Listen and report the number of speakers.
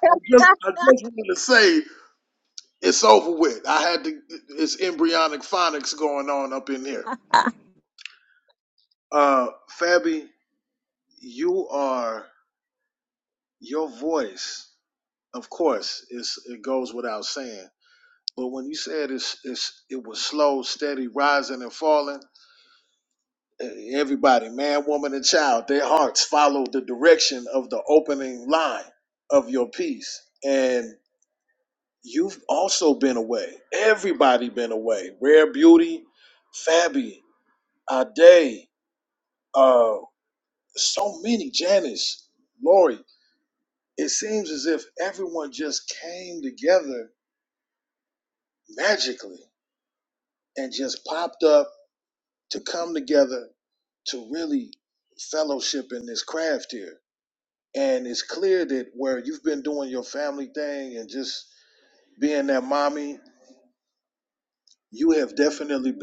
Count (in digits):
1